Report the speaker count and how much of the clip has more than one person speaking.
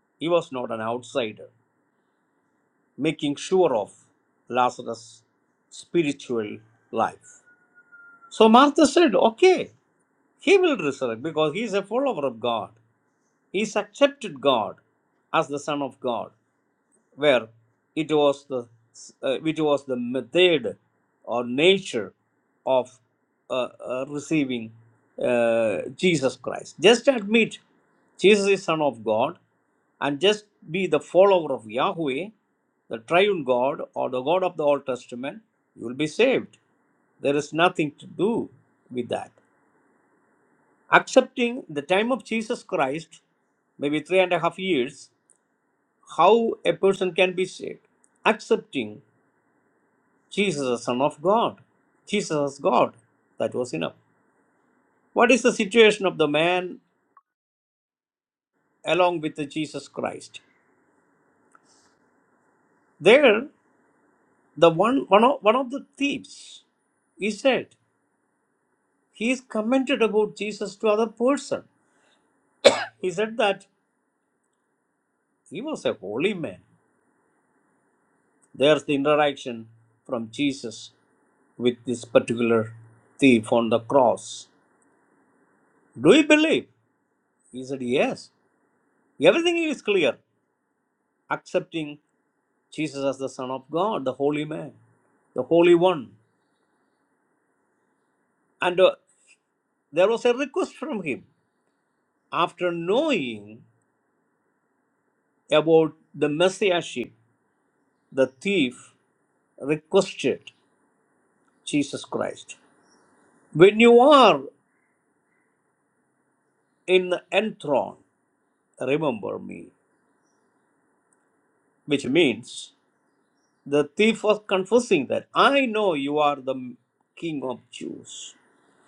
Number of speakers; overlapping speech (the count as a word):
one, no overlap